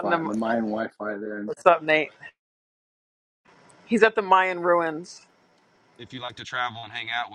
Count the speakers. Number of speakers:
3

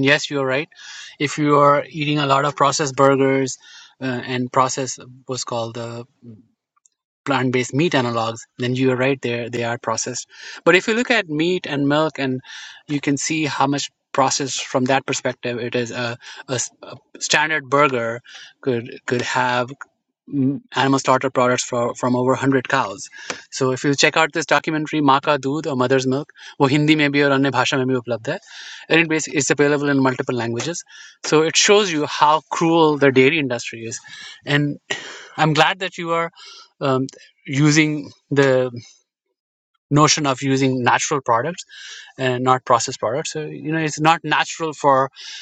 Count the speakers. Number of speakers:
1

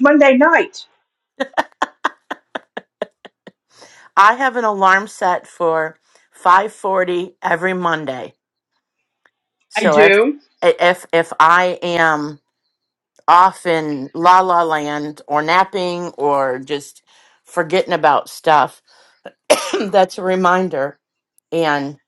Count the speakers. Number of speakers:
2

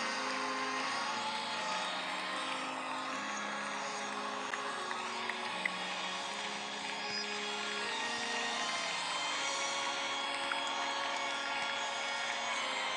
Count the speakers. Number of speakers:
0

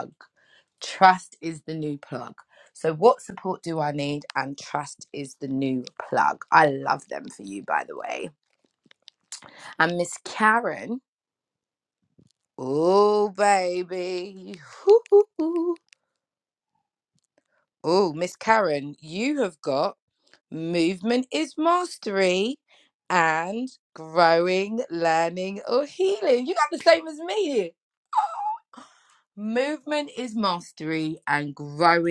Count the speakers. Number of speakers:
1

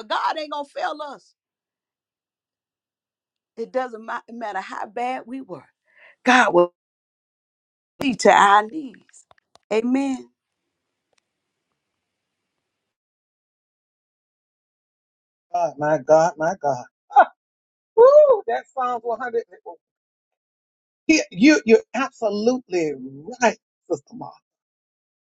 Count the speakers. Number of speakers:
2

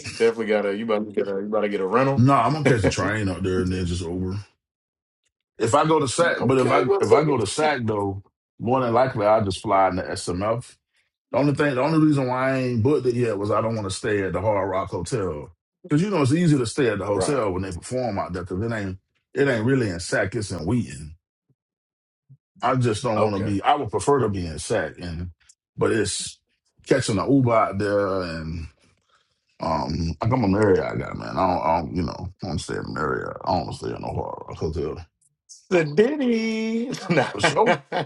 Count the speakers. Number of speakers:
2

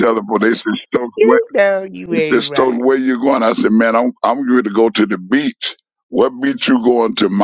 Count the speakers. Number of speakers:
2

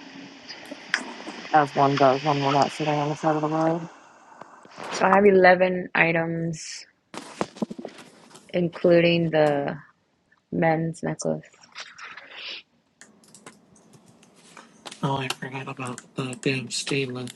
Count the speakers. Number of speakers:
3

